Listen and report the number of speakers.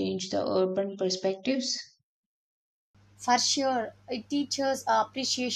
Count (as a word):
two